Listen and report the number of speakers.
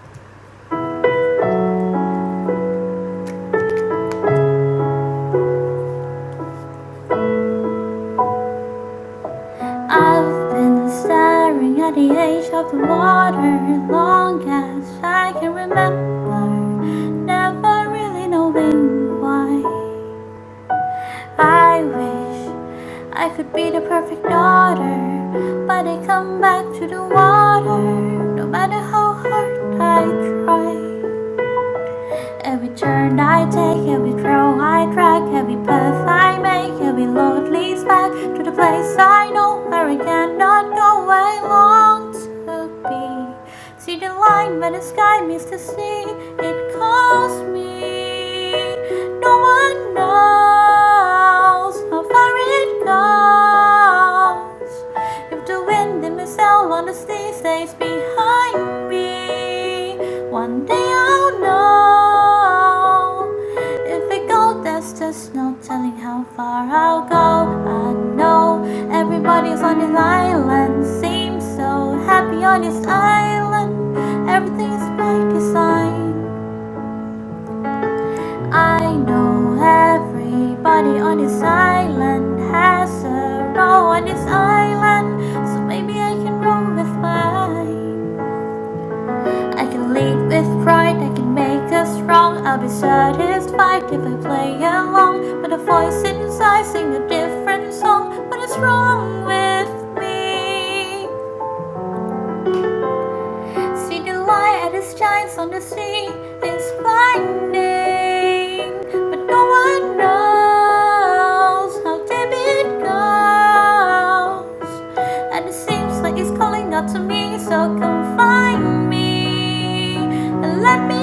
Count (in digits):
1